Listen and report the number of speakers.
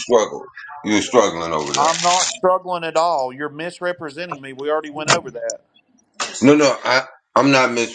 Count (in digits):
2